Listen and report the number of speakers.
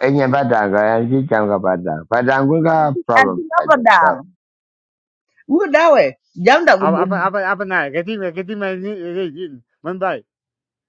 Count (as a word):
three